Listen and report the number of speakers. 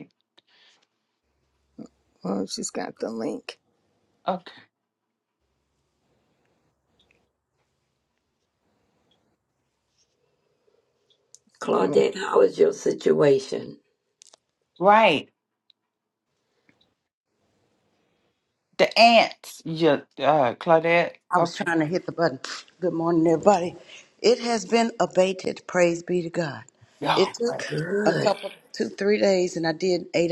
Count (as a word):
four